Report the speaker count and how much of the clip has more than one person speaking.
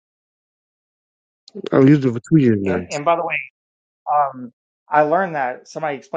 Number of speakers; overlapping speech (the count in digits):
2, about 3%